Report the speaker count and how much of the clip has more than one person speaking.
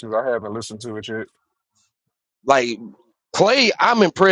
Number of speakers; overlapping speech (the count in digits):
2, no overlap